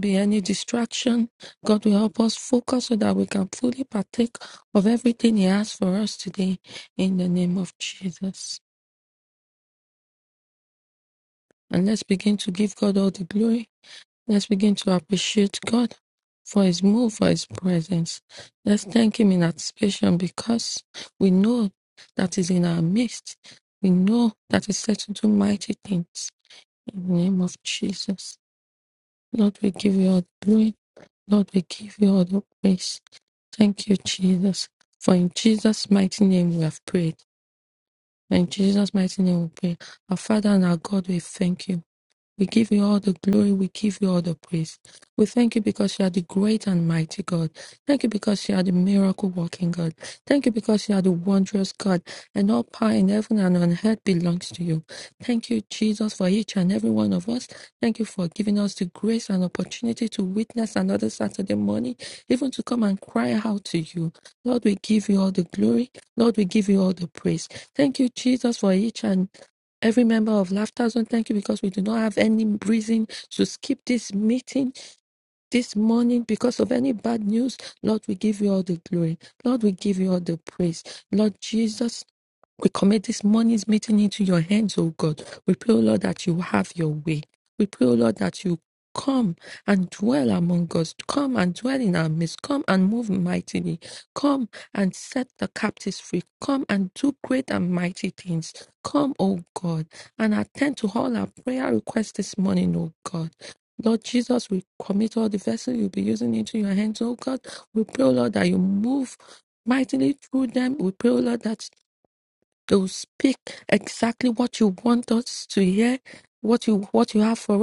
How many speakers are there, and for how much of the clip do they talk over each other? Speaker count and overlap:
1, no overlap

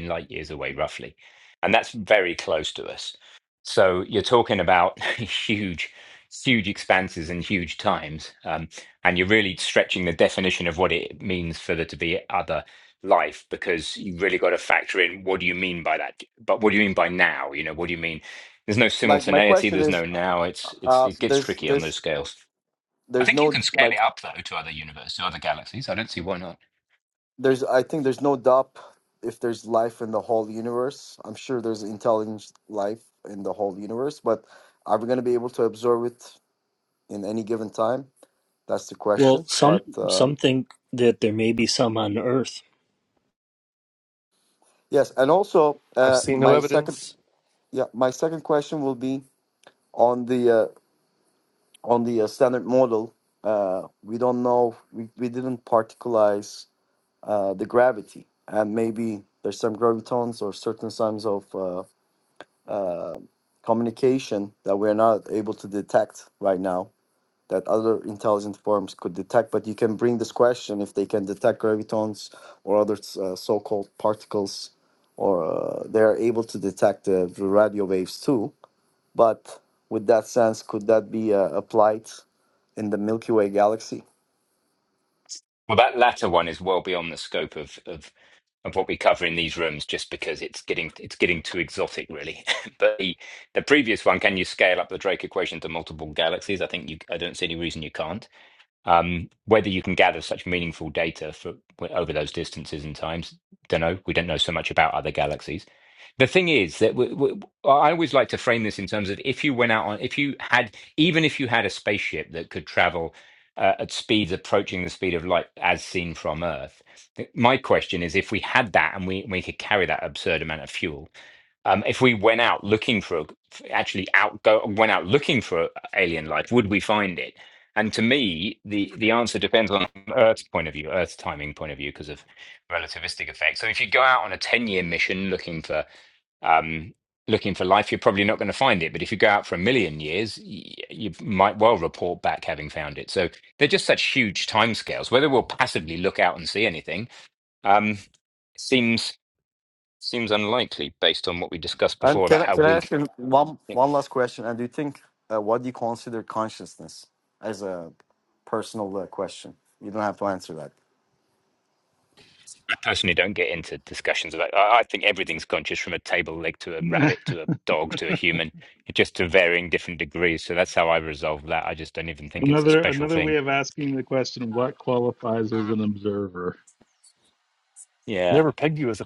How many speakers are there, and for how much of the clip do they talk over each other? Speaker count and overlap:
5, about 4%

